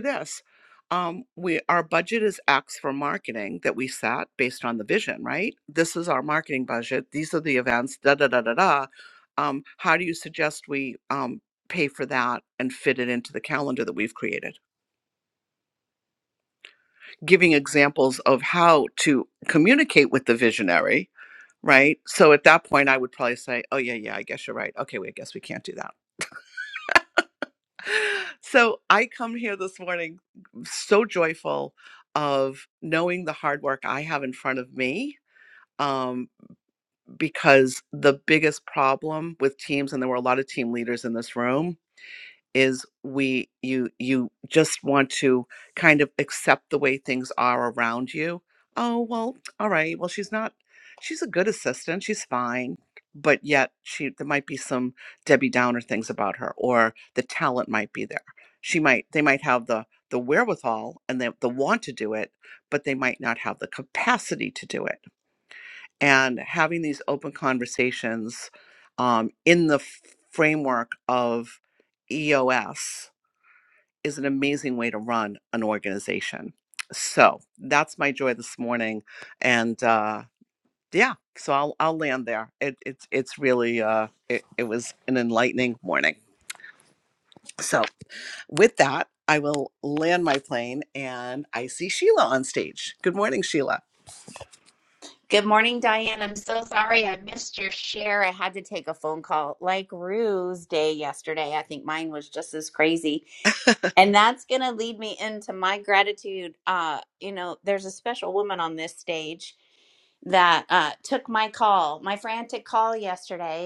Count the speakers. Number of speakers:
two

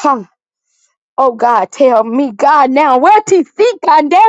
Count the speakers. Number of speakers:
one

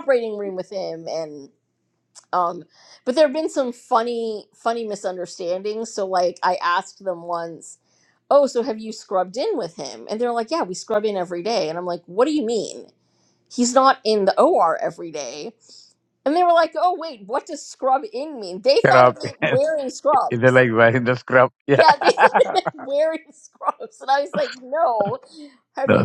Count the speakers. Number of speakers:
two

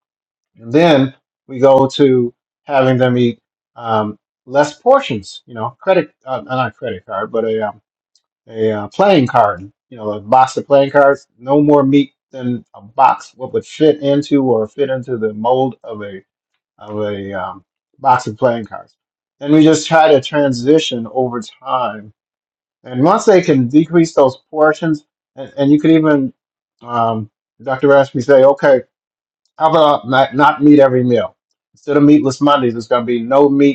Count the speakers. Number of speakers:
one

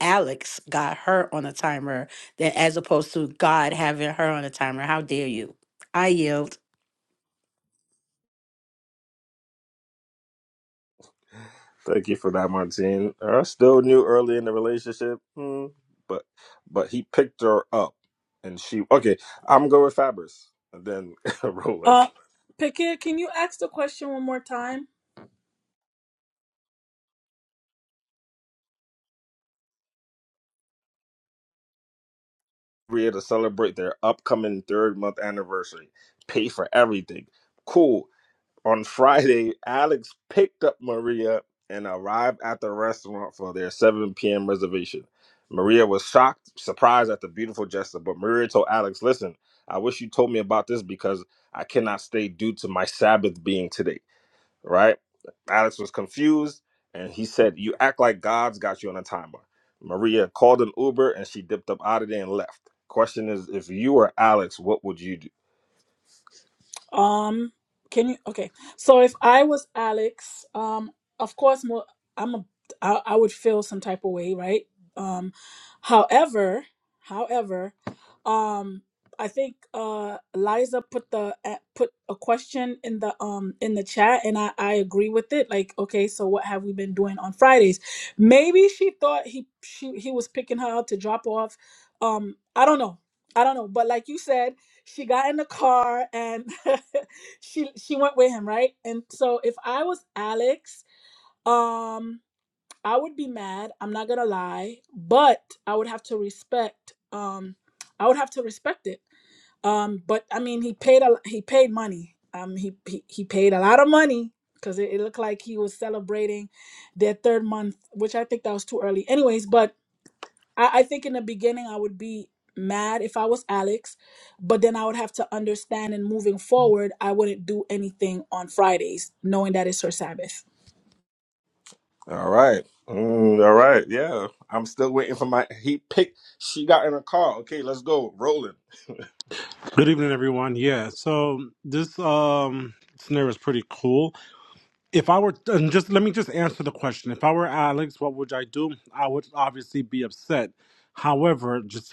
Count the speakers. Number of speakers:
four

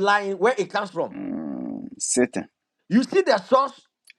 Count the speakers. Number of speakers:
two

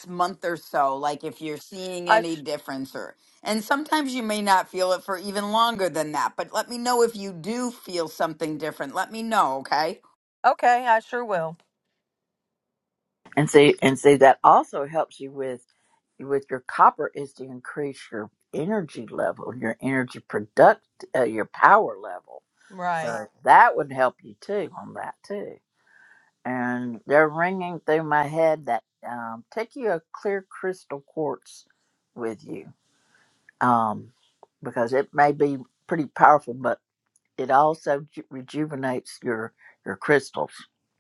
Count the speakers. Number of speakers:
three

